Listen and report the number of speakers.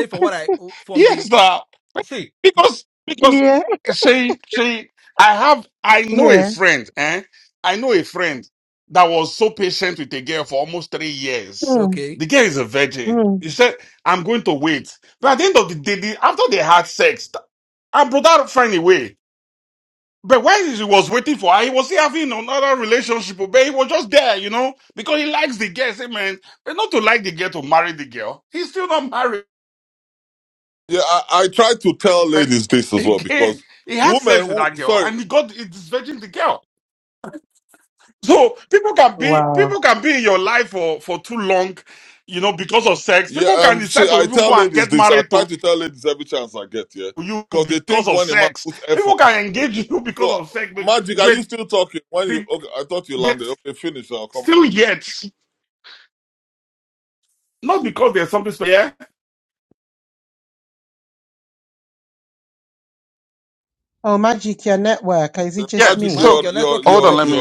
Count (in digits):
4